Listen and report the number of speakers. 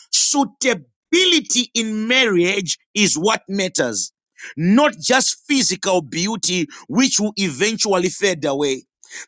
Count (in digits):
1